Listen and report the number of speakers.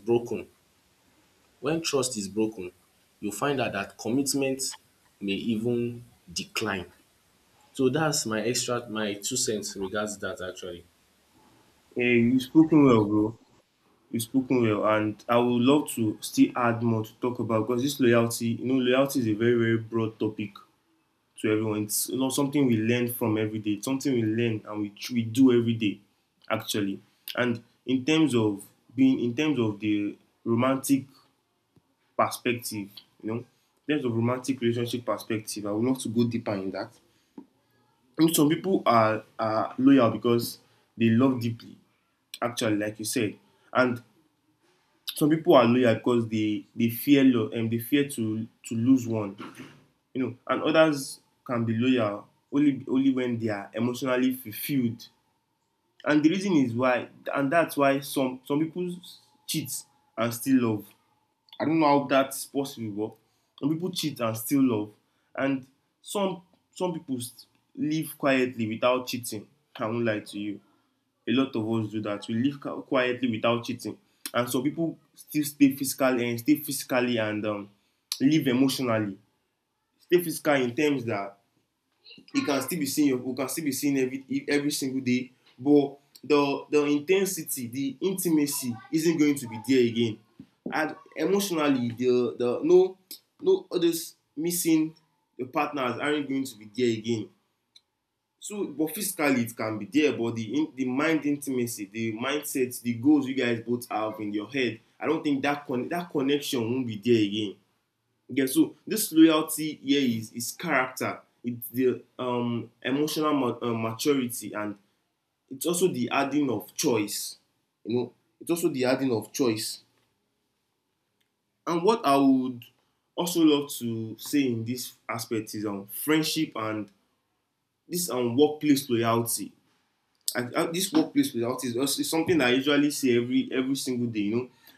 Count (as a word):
two